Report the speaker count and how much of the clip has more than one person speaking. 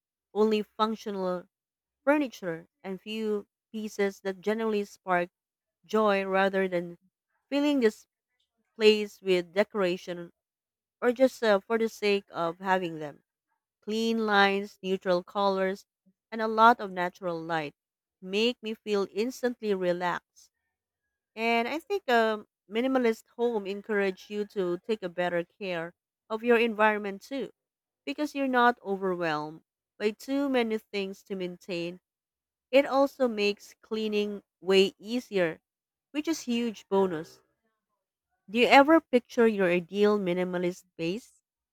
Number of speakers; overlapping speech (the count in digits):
1, no overlap